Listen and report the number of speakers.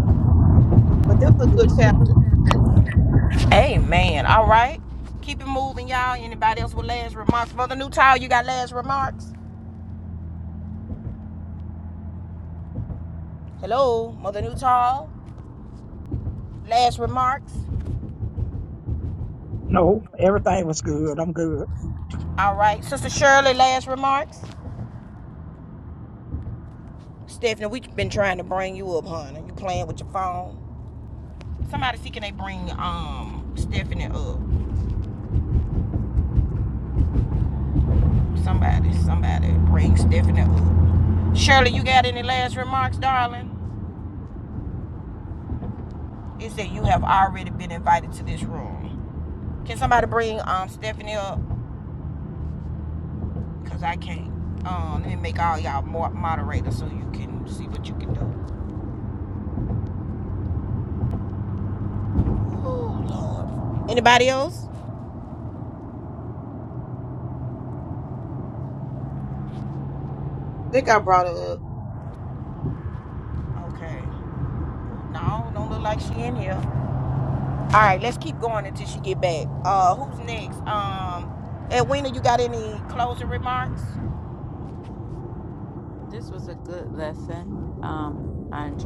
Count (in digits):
4